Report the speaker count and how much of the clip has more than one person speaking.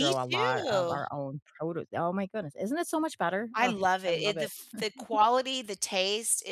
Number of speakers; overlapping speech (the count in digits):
2, about 25%